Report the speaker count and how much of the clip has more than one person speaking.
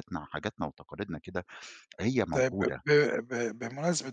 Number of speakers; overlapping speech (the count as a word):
two, about 12%